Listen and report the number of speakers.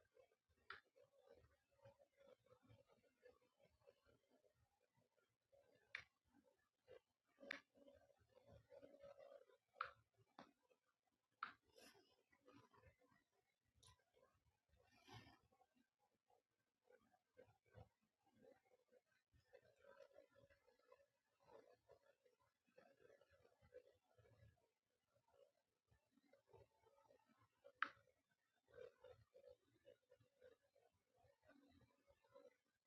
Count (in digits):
0